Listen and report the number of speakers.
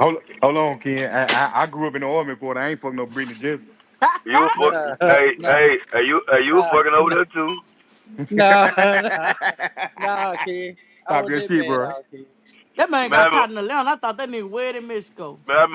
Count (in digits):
4